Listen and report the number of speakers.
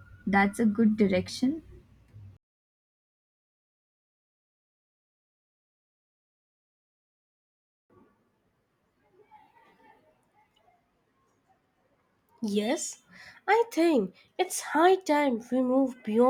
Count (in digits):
2